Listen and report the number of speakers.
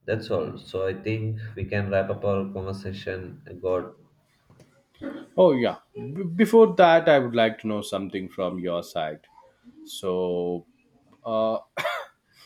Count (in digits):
2